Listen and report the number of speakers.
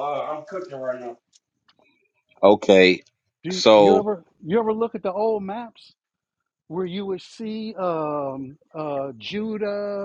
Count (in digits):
3